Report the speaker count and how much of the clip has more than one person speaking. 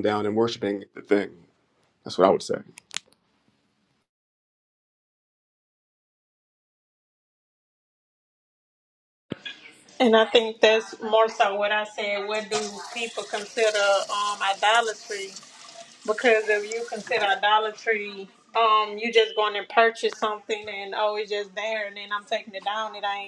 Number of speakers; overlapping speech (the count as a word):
two, no overlap